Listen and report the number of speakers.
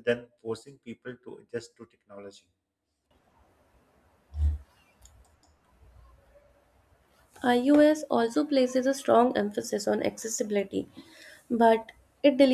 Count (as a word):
two